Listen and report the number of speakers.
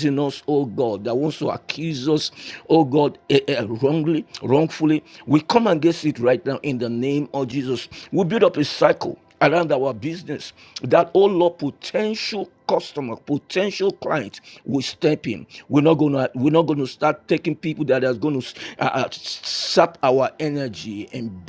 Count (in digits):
1